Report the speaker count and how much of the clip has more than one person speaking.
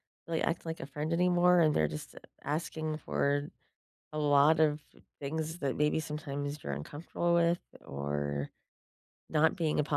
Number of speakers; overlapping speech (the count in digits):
1, no overlap